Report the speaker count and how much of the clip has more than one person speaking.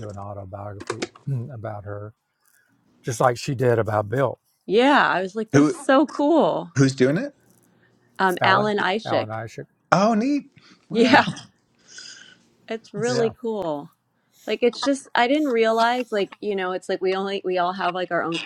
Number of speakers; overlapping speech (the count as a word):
three, about 7%